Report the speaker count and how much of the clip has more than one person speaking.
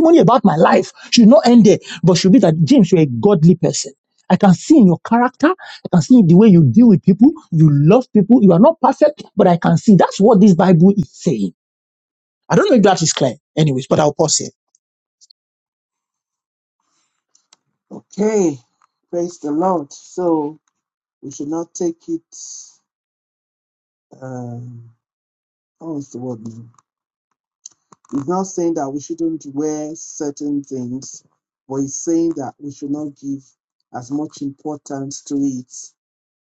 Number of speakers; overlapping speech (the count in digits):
2, no overlap